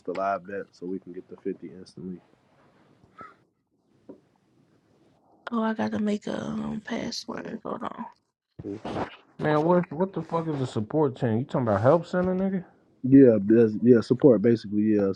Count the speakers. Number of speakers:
3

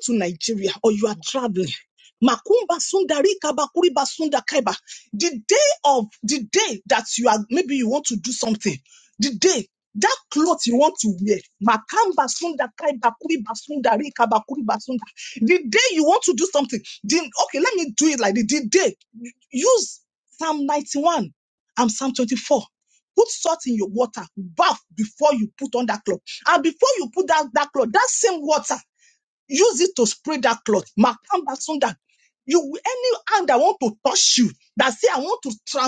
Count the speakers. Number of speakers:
1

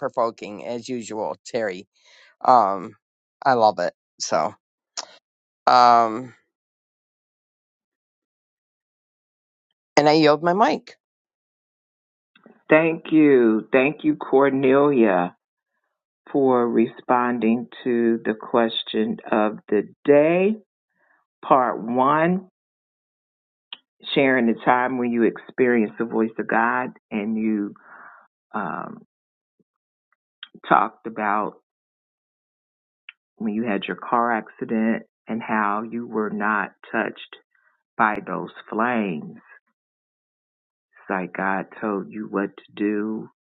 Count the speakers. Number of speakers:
2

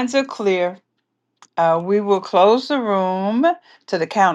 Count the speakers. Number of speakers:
1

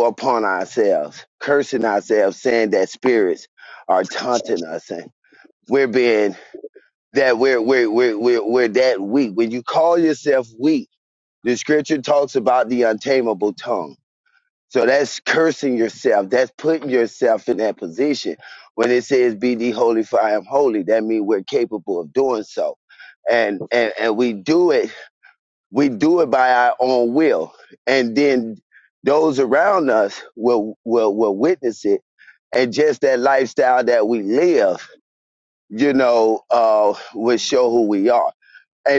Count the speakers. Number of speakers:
1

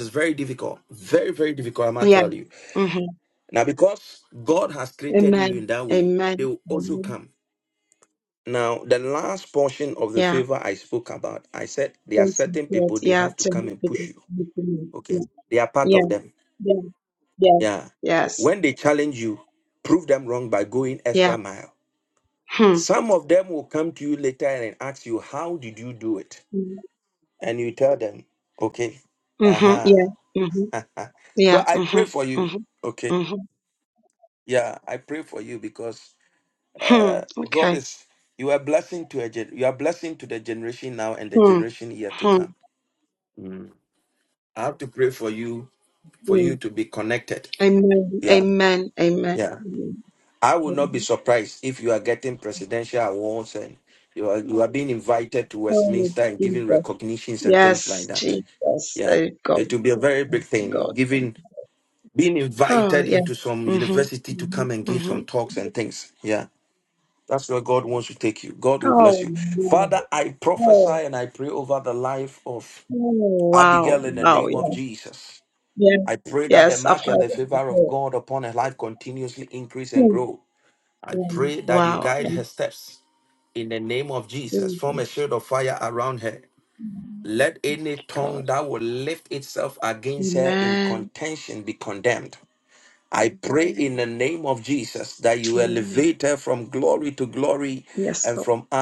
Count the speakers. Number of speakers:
2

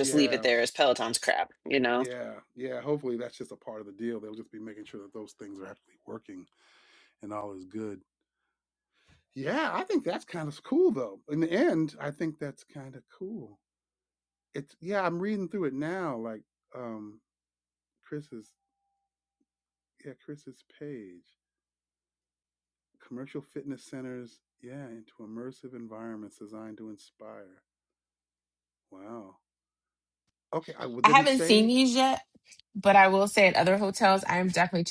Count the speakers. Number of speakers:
3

